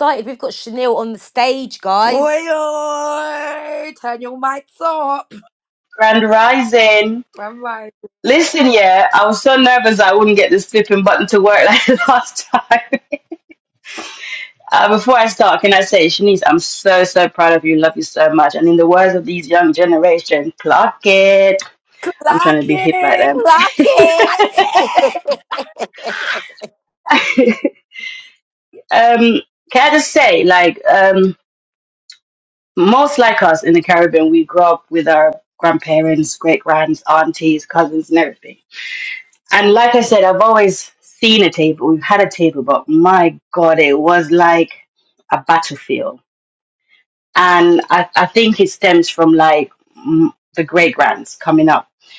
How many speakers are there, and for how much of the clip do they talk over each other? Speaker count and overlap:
3, about 3%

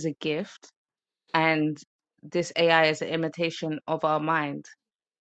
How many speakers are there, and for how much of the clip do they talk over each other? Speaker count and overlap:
1, no overlap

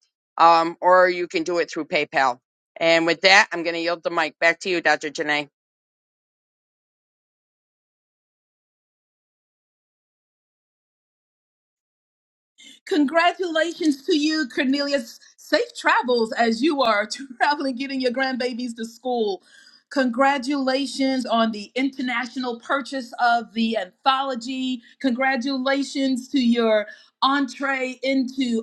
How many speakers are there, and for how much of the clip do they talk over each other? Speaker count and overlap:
2, no overlap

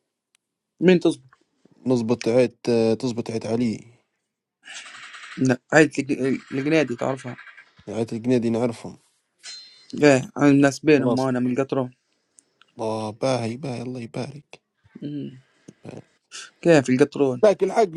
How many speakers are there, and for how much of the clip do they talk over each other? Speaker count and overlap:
2, about 1%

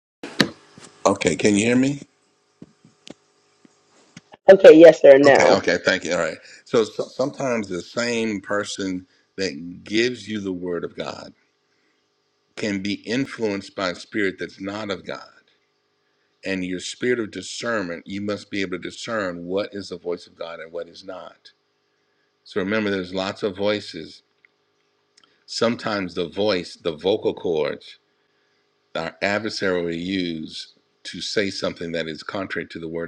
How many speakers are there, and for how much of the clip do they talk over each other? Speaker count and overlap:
2, about 1%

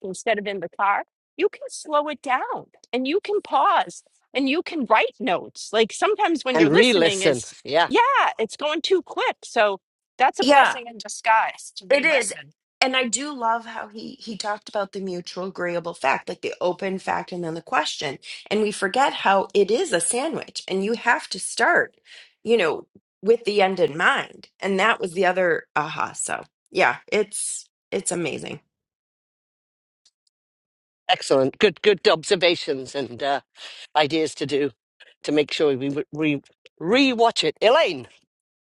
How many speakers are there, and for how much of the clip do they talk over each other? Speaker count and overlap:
3, about 4%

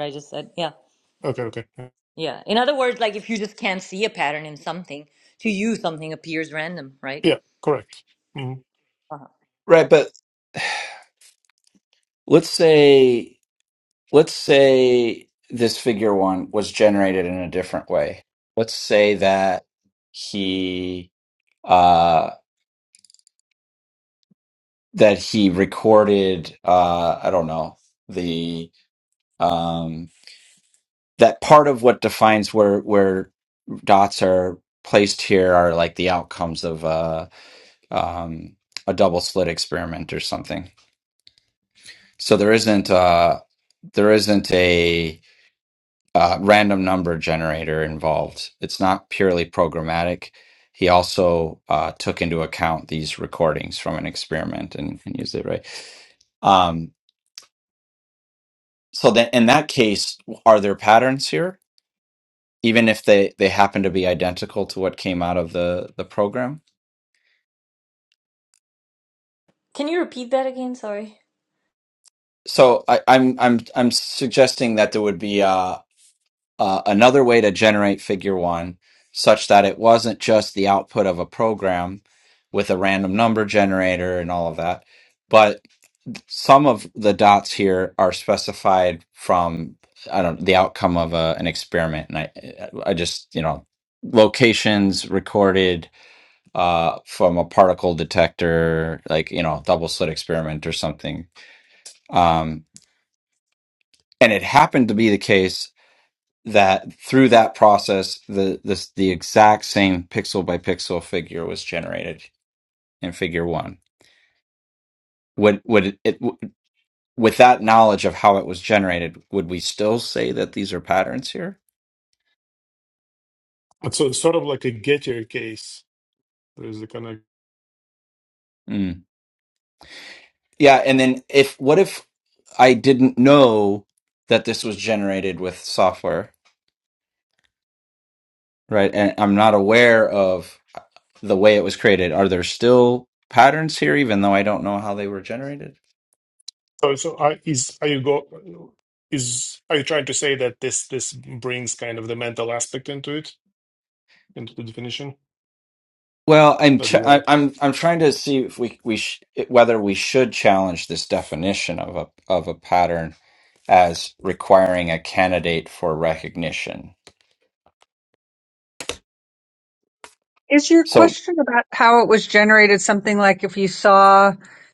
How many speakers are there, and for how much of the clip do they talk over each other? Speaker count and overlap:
4, under 1%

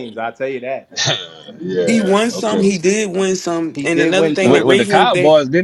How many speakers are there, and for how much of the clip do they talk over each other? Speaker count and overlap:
3, about 42%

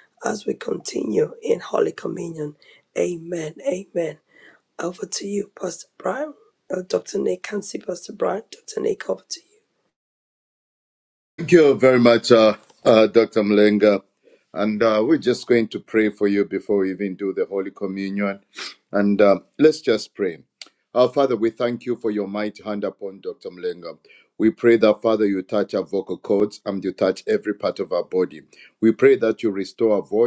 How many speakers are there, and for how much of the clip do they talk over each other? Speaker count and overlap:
2, no overlap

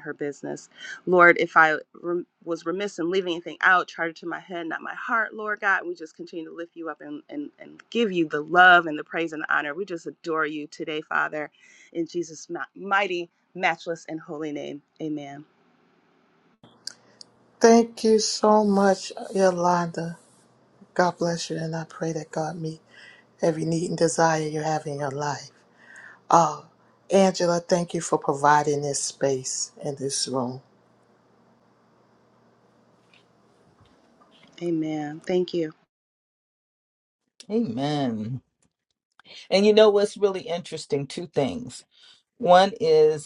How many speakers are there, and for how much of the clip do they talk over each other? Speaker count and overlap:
3, no overlap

